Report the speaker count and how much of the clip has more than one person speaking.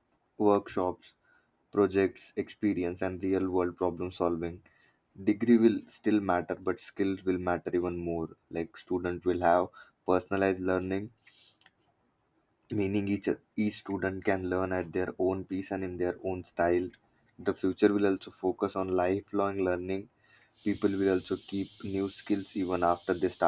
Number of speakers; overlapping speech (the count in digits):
1, no overlap